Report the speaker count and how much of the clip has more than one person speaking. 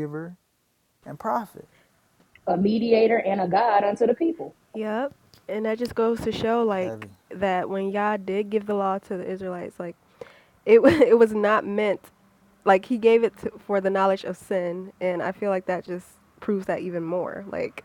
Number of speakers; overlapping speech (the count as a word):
three, about 1%